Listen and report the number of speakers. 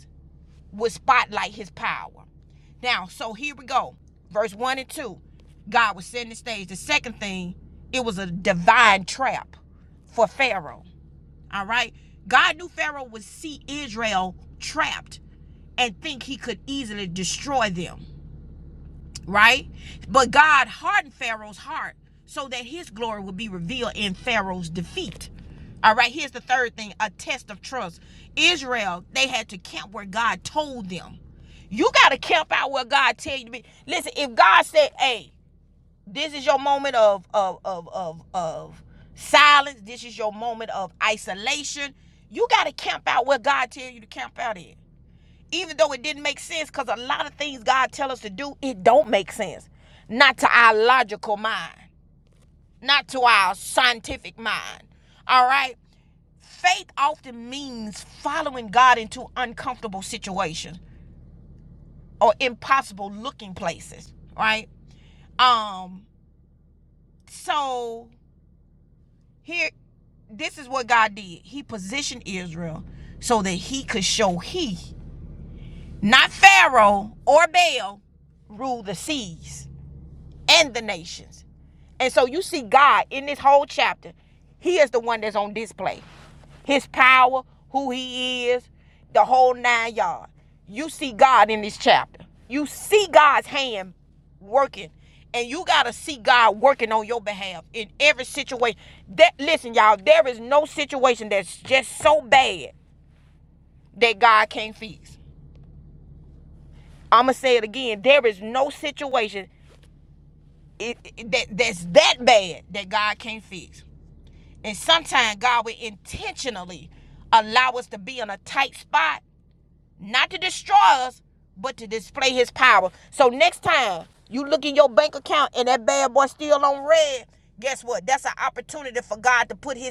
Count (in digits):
1